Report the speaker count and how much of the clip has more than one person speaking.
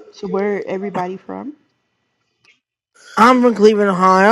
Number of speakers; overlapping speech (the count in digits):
2, no overlap